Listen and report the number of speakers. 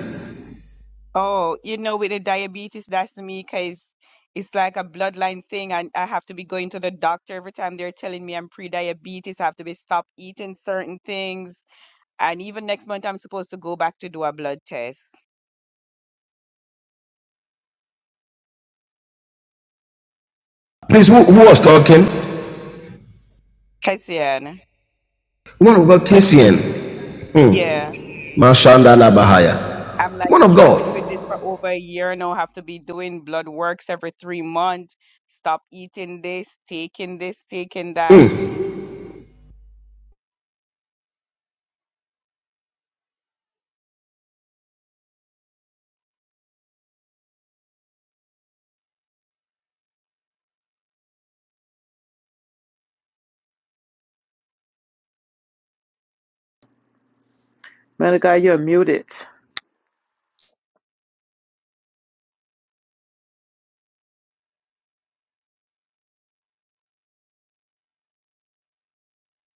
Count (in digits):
3